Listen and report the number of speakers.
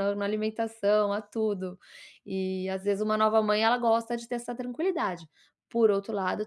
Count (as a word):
one